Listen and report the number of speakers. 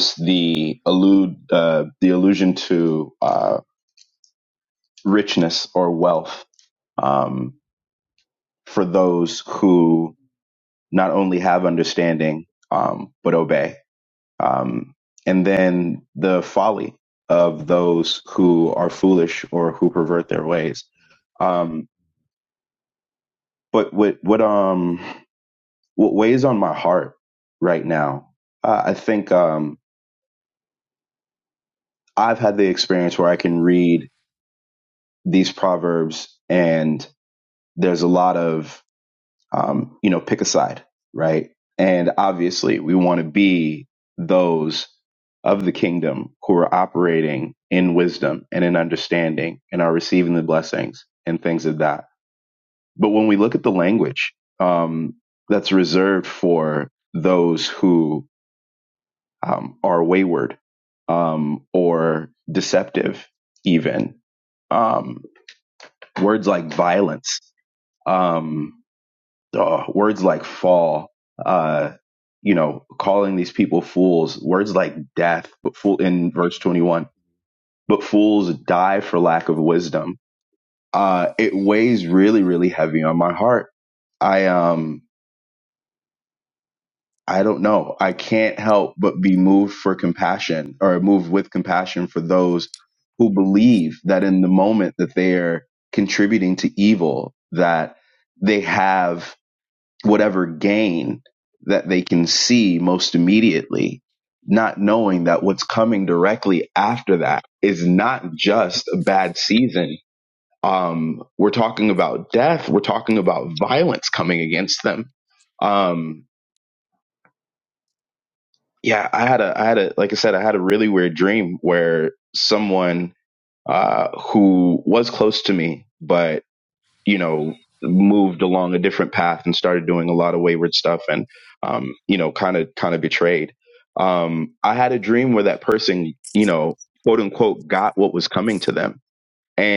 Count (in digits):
1